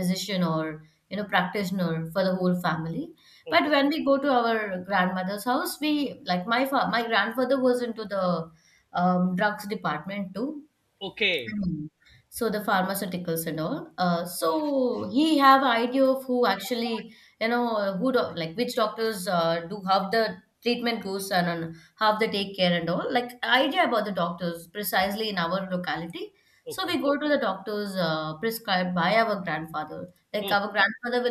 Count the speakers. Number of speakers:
two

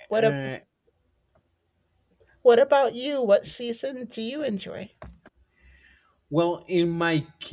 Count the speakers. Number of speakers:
two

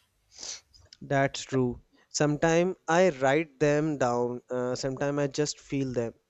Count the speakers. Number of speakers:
one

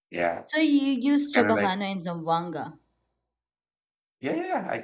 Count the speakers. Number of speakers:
two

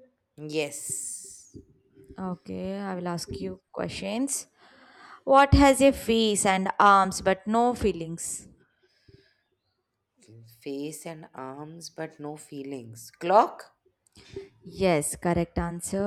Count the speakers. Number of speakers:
two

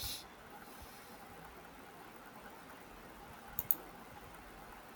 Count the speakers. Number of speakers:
zero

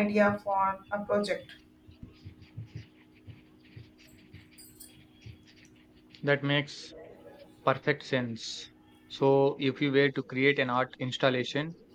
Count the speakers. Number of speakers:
two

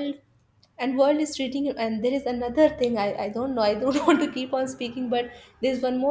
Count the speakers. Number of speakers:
one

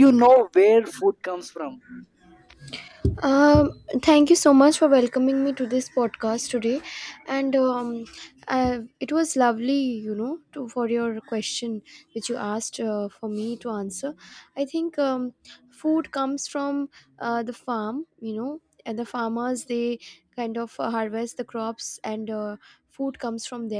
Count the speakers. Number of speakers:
two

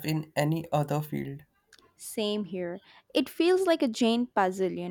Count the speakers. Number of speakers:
two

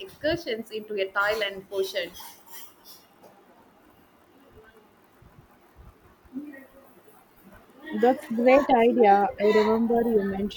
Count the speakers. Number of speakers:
two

